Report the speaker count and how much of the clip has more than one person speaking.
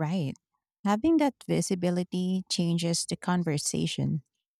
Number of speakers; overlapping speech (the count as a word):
one, no overlap